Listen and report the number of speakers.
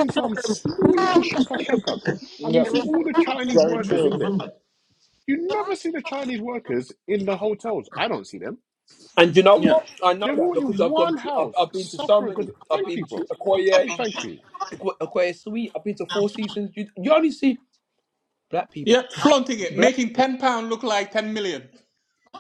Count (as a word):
three